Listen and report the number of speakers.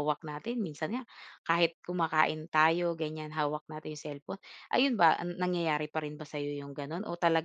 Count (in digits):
1